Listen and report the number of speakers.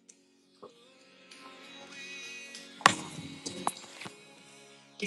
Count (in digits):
0